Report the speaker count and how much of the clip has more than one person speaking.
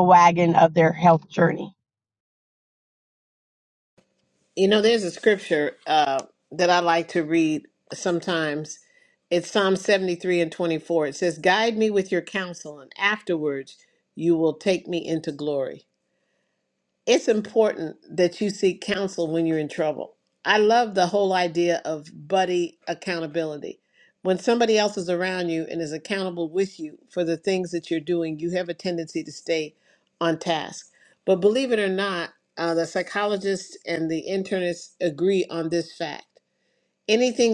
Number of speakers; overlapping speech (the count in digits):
2, no overlap